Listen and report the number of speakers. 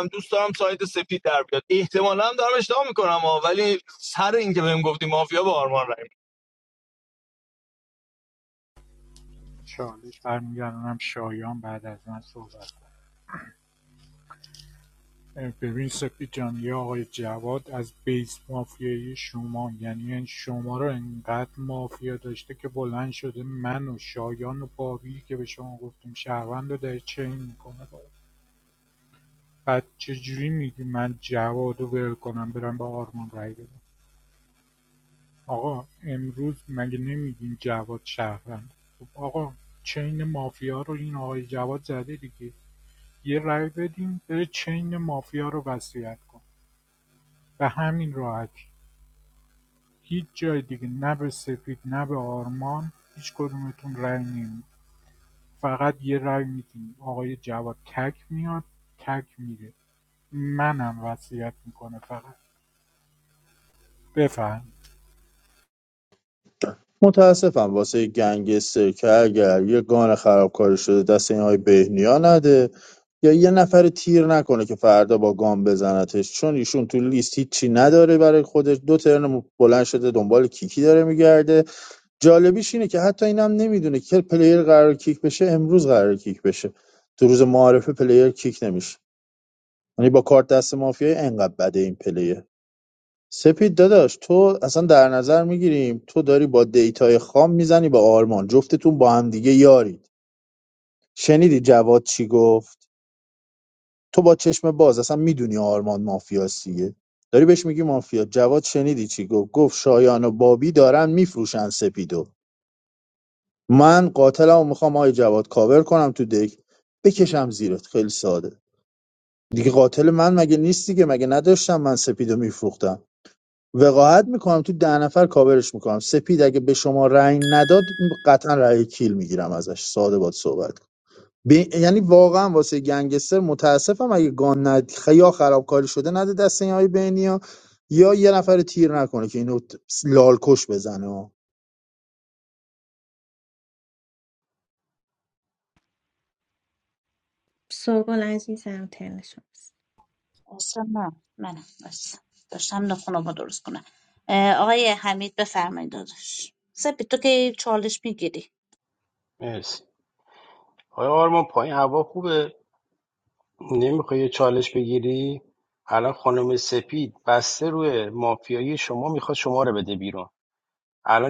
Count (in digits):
6